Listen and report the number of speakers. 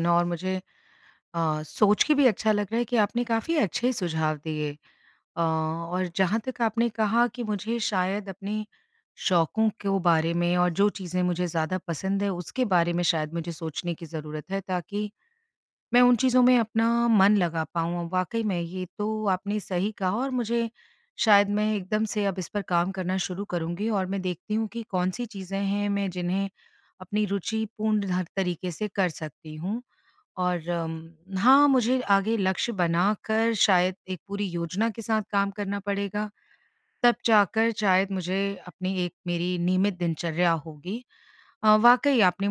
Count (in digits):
1